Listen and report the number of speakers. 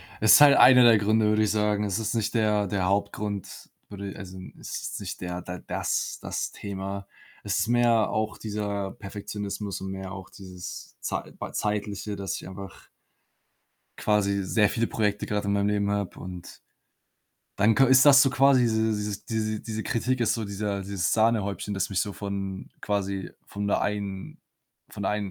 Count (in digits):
1